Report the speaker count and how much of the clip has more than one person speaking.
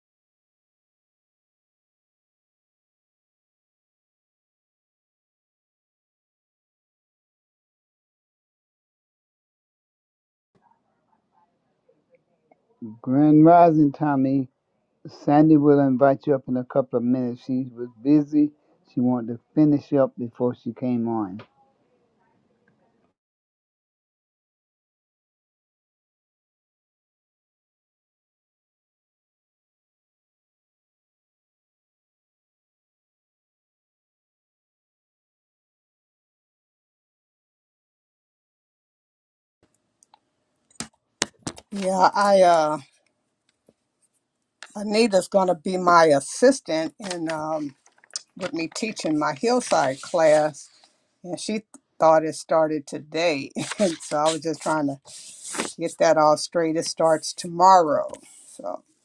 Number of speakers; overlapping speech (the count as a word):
two, no overlap